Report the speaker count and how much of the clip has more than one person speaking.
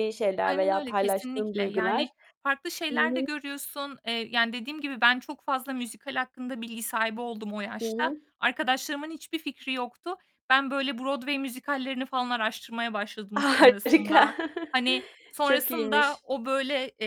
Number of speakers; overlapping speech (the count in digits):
2, about 23%